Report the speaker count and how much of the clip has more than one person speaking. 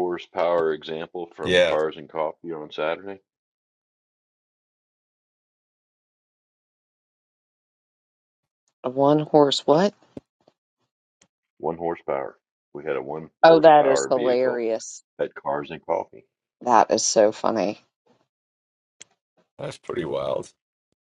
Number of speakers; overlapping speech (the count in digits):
3, about 7%